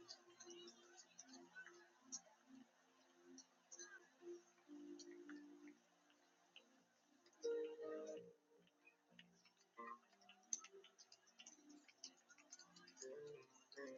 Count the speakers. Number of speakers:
zero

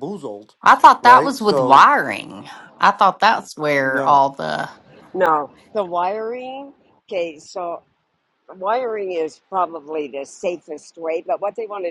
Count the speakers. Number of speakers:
three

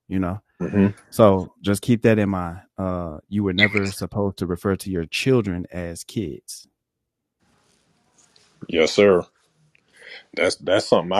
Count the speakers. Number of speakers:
two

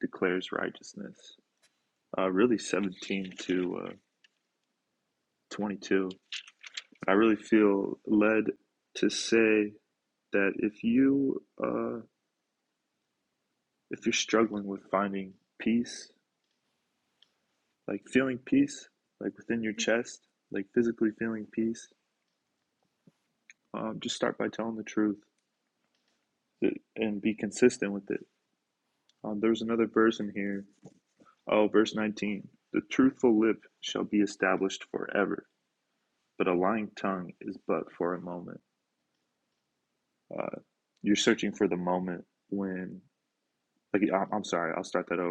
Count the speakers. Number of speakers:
one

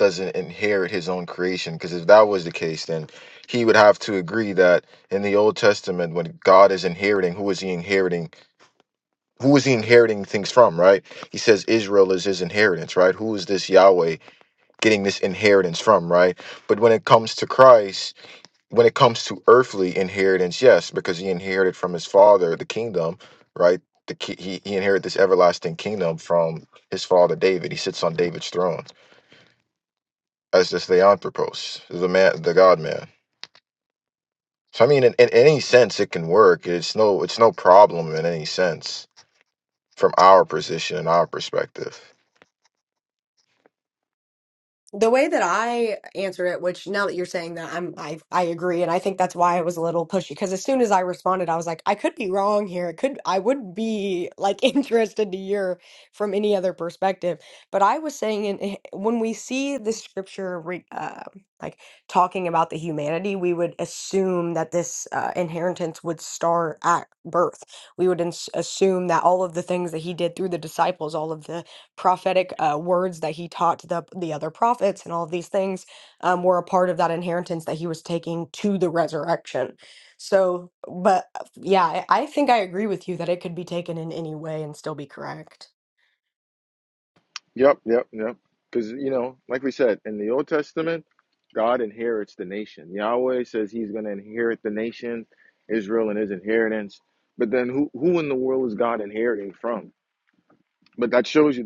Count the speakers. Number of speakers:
two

